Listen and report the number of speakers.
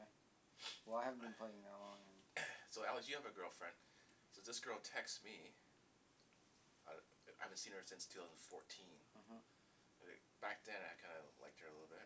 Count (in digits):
2